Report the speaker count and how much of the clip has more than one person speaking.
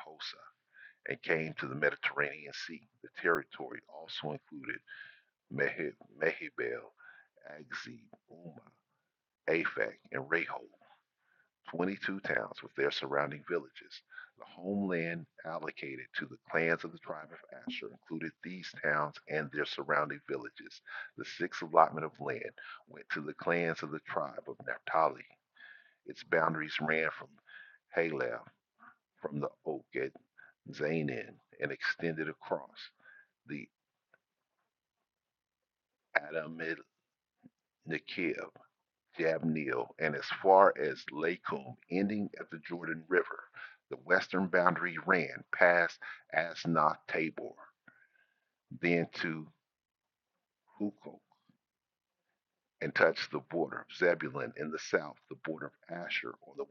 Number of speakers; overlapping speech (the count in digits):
1, no overlap